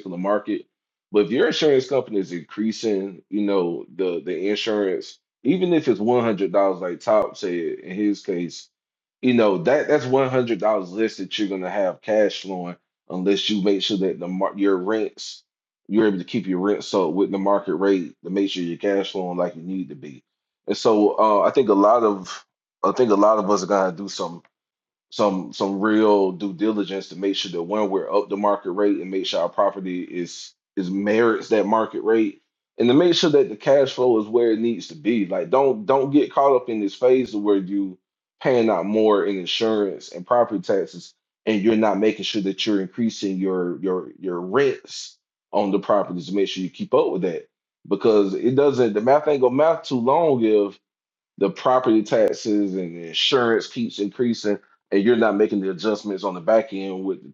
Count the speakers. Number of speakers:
1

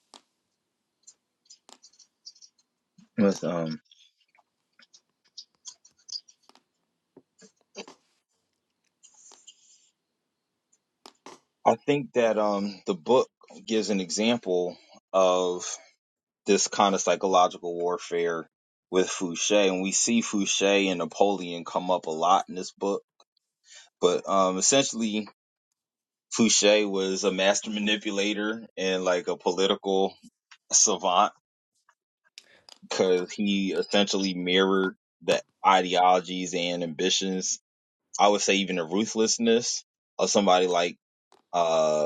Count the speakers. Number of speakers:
1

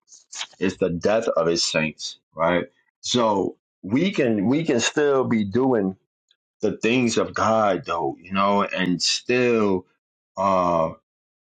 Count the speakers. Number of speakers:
1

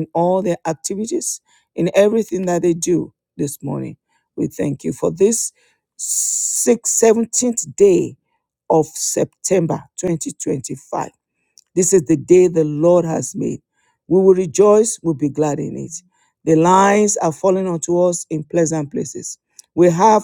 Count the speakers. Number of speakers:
1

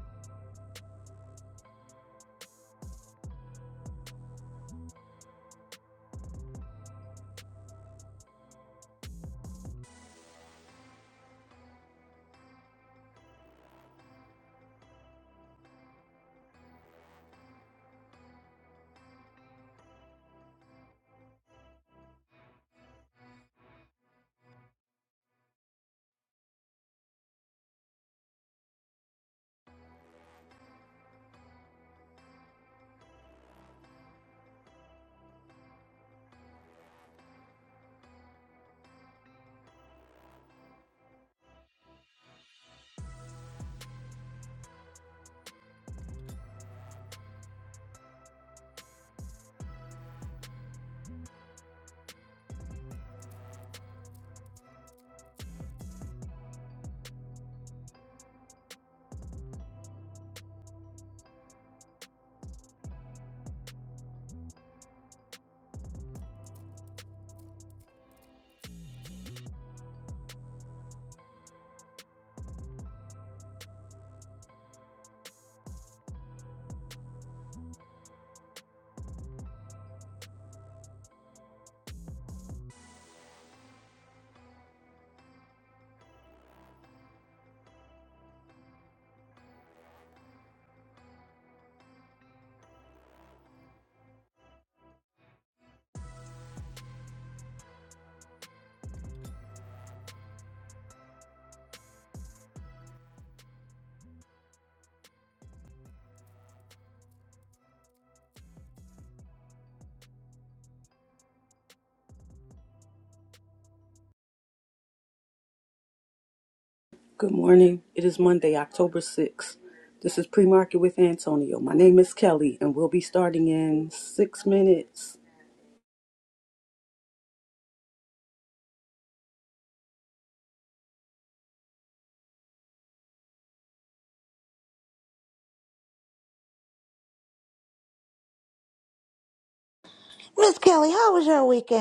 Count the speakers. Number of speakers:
2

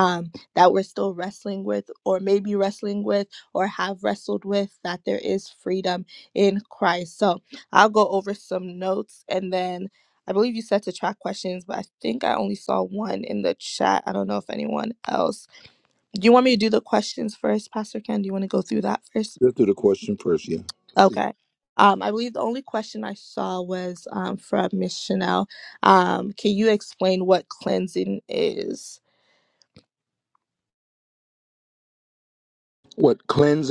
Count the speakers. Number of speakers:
2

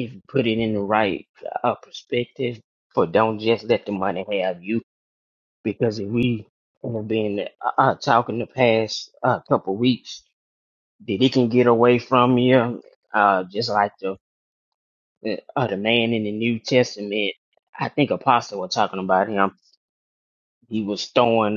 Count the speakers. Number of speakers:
1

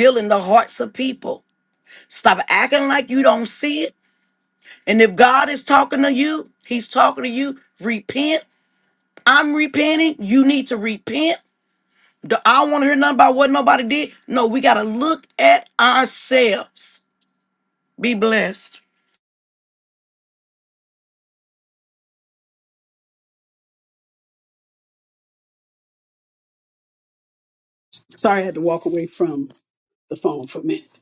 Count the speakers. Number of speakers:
2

